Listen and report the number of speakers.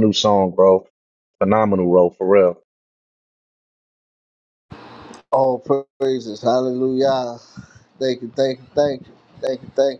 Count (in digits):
2